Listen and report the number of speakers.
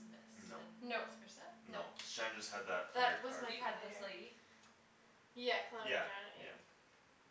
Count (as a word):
three